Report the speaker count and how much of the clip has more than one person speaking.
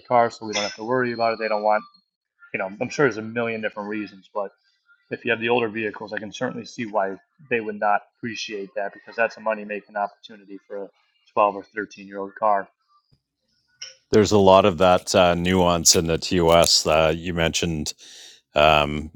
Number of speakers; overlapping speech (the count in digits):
2, no overlap